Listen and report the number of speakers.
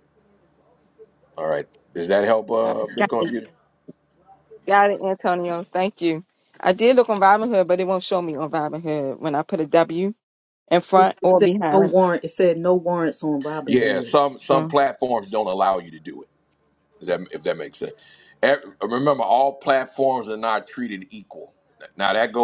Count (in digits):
3